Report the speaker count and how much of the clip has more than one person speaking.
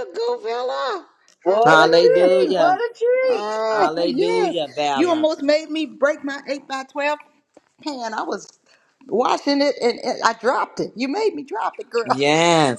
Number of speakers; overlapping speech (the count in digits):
3, about 21%